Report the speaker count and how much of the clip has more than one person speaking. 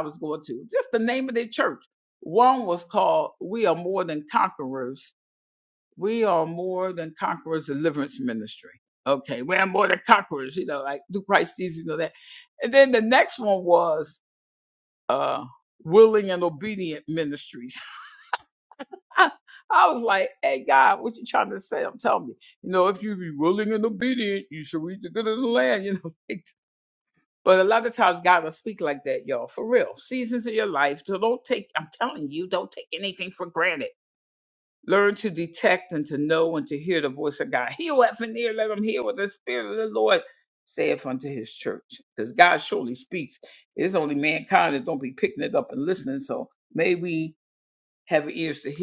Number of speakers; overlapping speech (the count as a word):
one, no overlap